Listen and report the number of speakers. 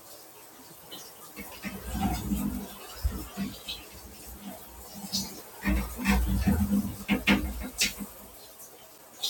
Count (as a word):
zero